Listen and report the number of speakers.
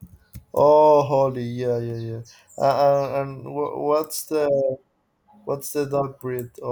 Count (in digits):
1